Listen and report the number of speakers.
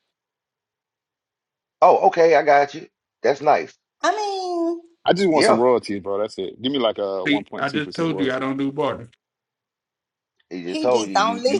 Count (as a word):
four